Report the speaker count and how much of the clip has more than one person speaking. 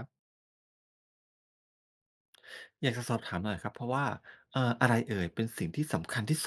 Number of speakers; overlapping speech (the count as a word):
one, no overlap